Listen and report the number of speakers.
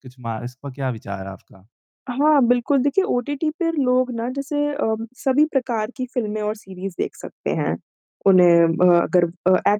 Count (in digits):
2